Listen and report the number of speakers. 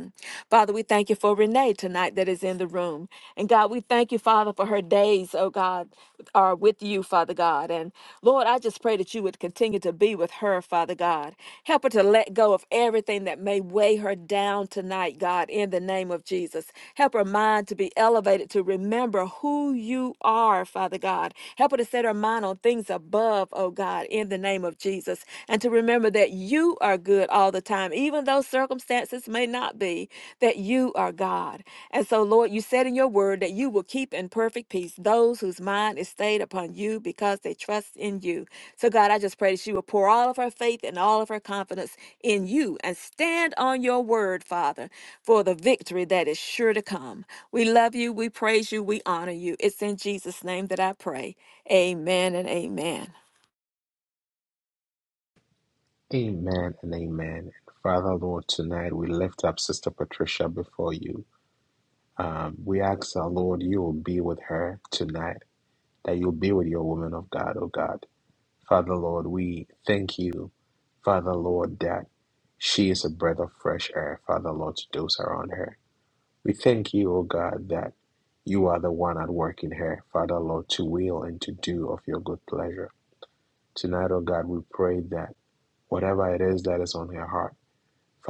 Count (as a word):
two